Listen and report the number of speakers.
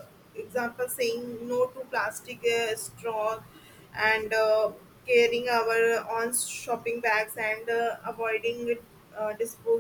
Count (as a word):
one